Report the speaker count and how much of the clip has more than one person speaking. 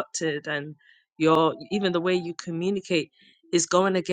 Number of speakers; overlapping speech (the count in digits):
1, no overlap